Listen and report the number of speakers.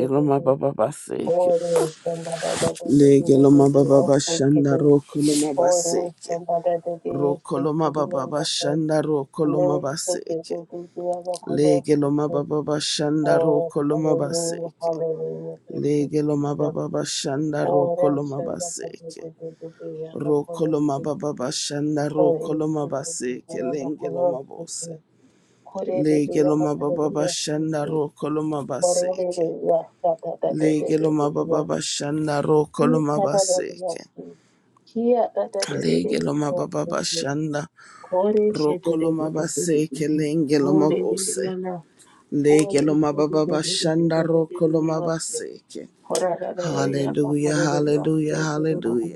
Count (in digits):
2